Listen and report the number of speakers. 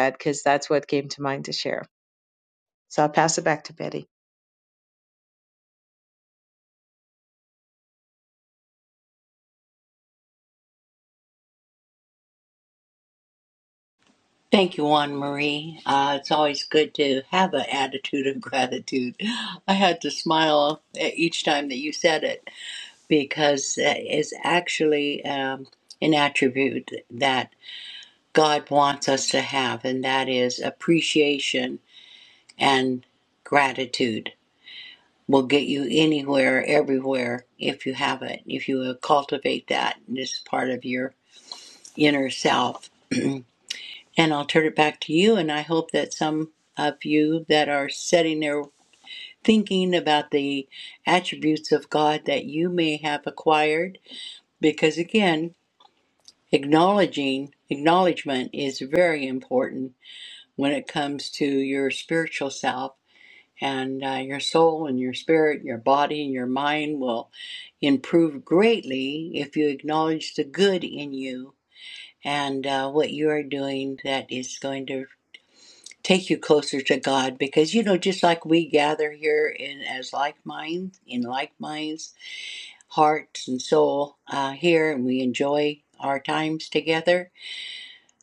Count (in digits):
2